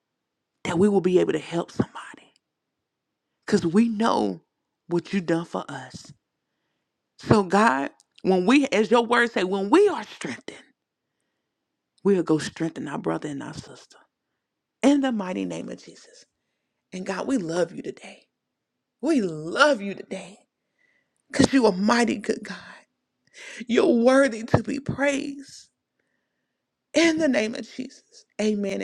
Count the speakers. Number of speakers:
1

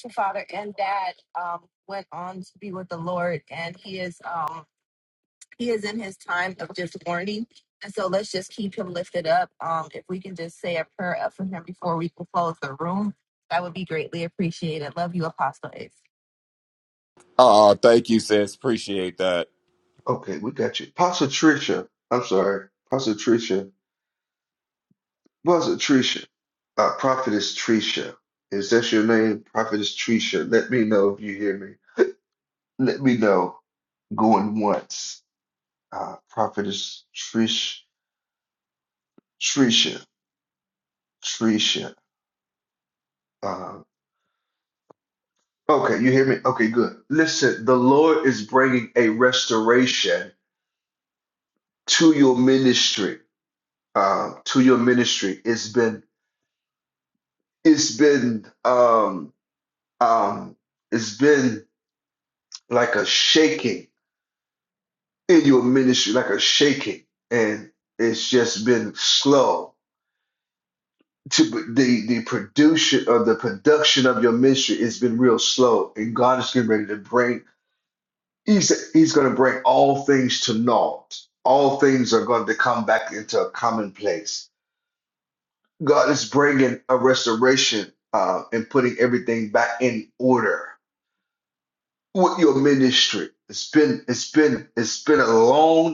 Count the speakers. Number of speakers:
3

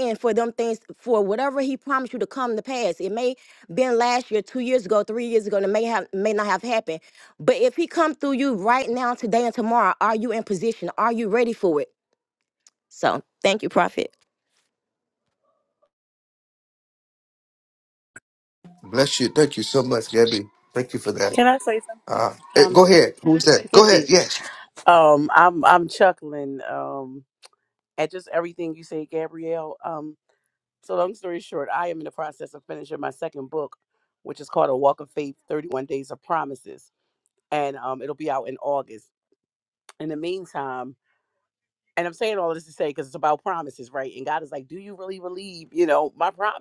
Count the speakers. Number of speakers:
3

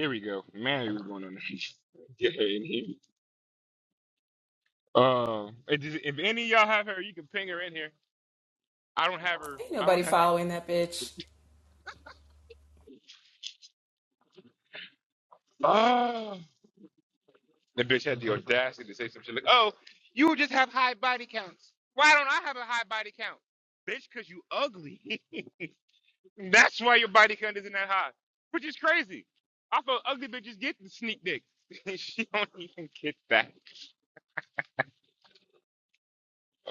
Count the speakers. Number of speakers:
2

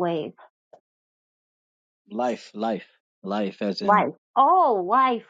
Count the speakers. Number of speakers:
2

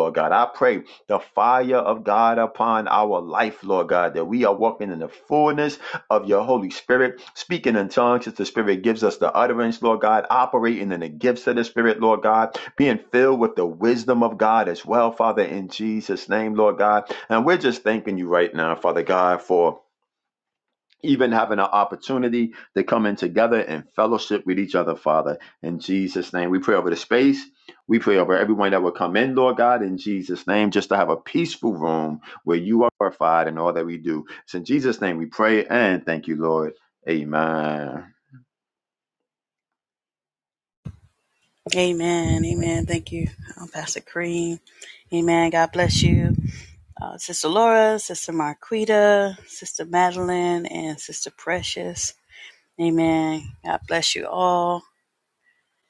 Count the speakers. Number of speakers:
2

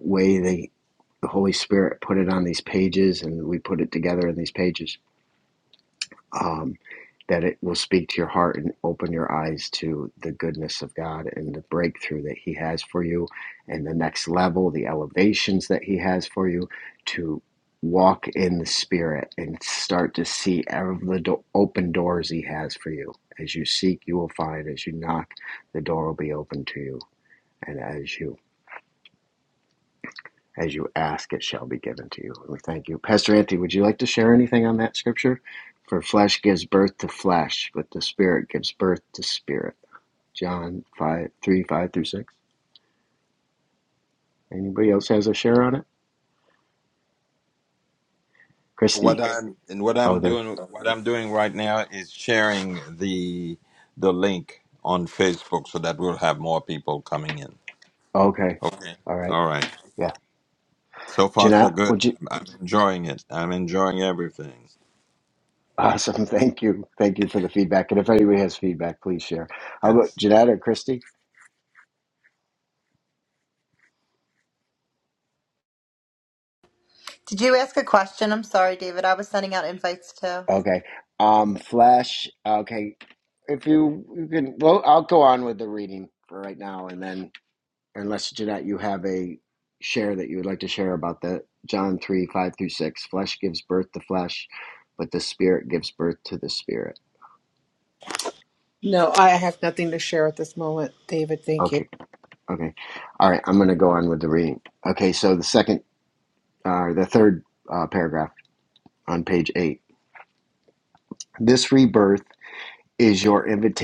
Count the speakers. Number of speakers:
4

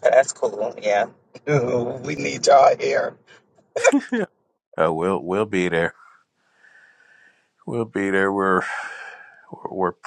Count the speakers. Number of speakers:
2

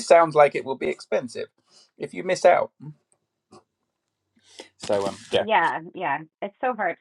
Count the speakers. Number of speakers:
2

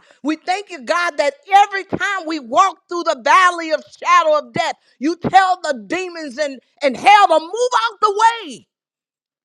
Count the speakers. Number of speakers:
1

